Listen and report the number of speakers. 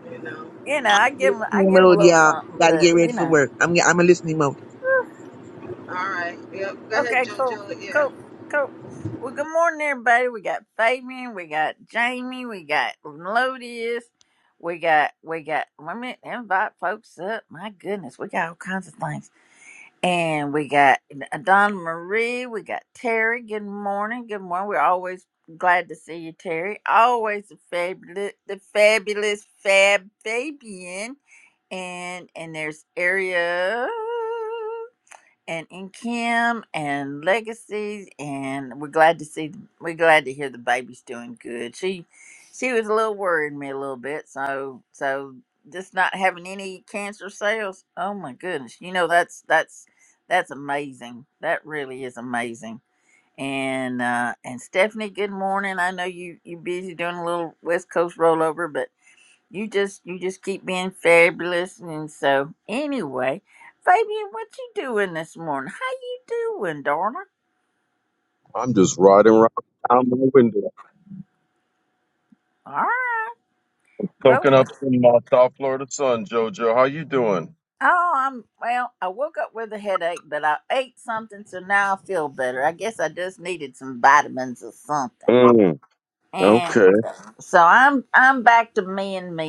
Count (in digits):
4